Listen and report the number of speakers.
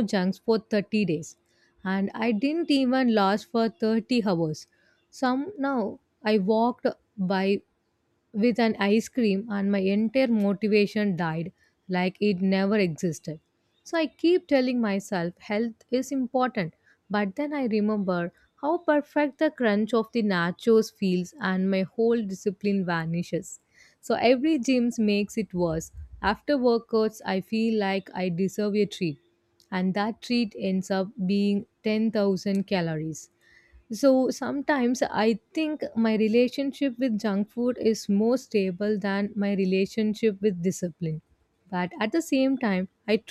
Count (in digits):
1